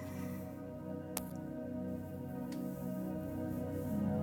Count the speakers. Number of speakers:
0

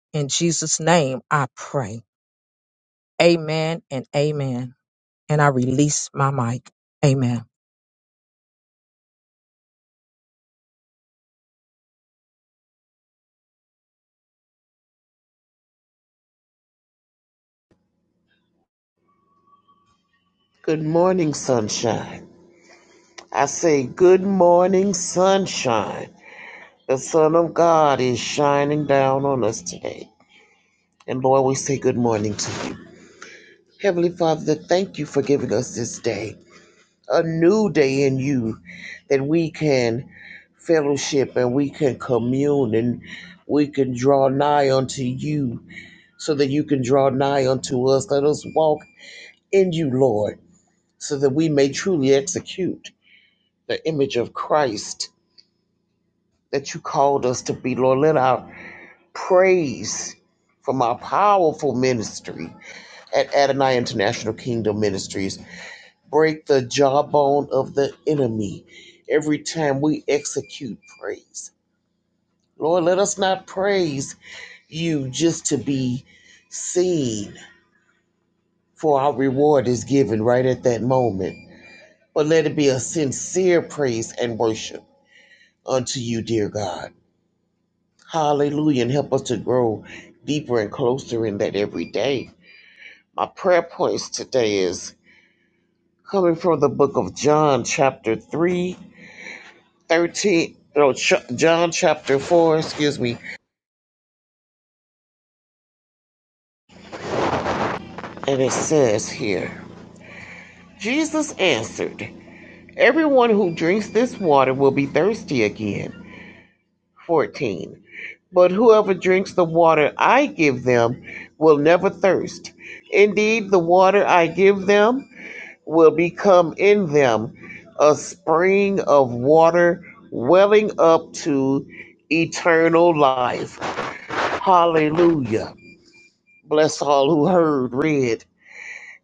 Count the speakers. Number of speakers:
2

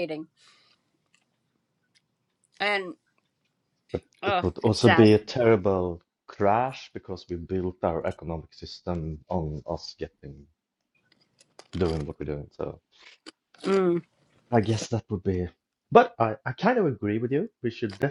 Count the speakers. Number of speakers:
2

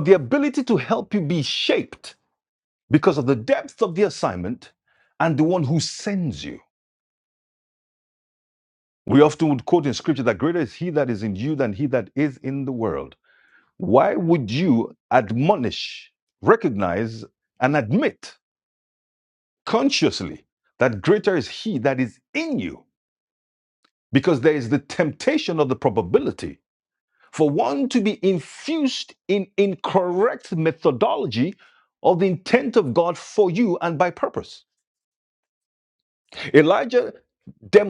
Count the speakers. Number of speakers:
1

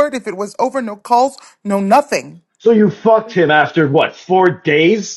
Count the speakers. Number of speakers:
2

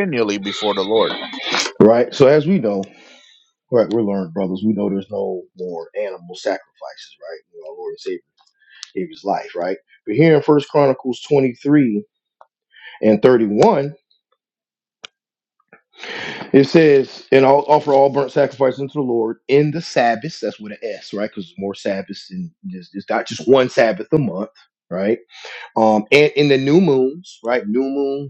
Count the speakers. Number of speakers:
2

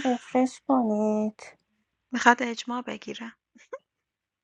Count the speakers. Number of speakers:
2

